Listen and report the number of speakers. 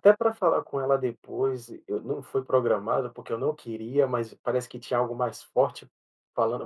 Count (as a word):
one